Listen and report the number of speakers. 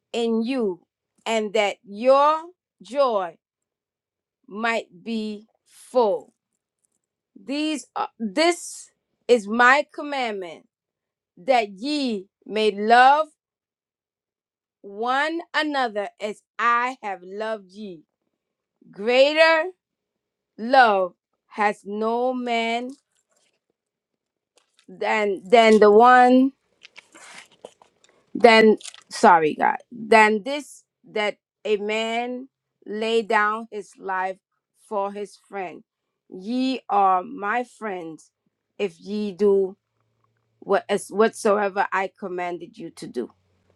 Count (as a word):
one